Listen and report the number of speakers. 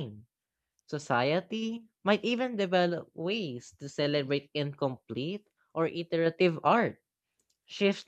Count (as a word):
one